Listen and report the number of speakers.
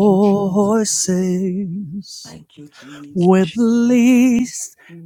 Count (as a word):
two